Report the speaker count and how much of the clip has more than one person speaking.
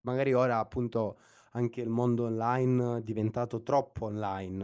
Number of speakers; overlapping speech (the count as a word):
one, no overlap